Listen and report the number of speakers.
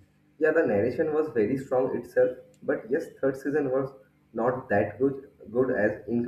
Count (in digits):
1